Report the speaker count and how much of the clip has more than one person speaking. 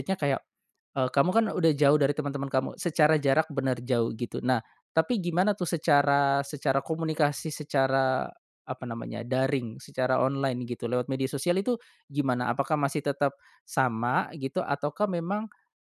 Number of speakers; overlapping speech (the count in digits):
1, no overlap